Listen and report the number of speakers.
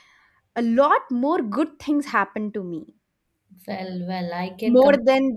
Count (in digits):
2